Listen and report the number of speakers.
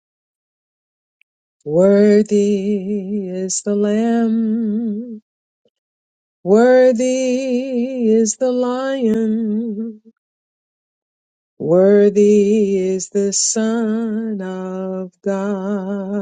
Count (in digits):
1